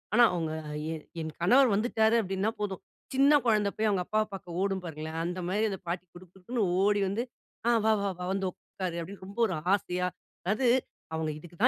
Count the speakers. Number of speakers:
1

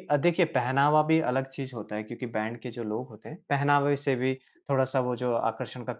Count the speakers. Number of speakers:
1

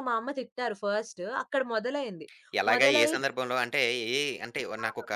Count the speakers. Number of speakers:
2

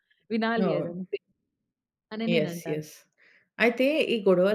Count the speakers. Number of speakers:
2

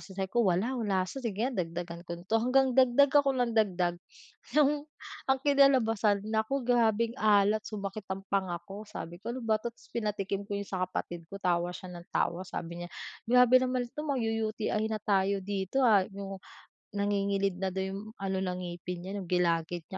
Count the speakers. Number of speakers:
1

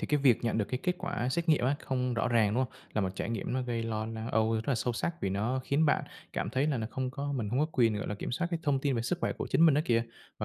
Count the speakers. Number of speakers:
1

